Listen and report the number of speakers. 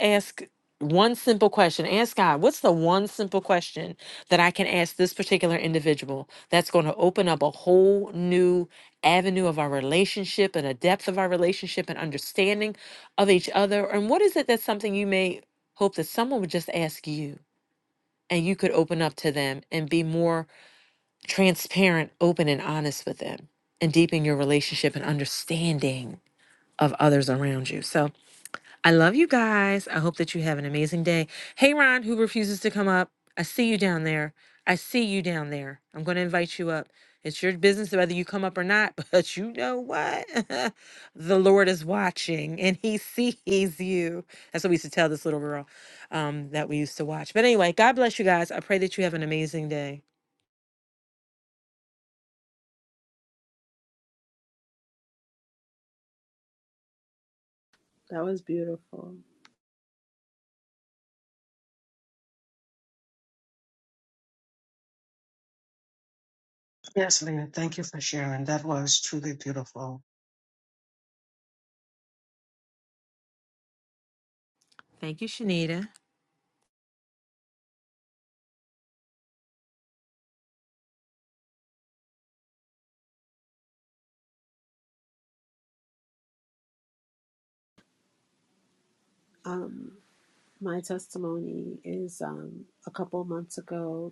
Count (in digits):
3